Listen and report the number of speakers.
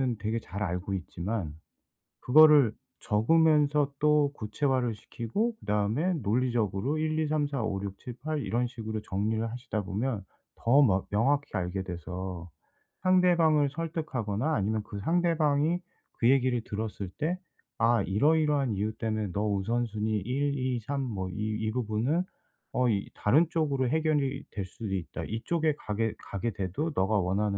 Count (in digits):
1